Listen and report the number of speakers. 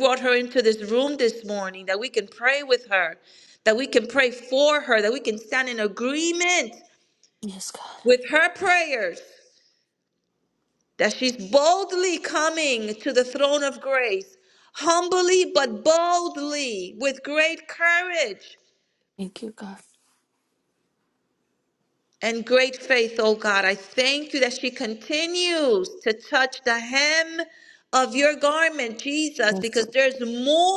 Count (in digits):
2